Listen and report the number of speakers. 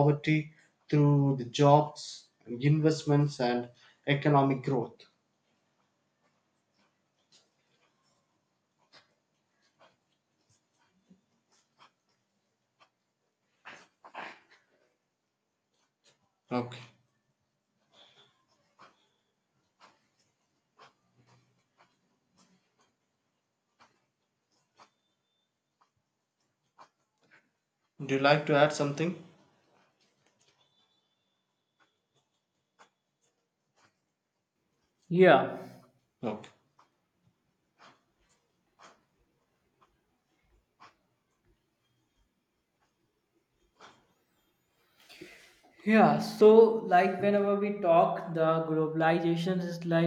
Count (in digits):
2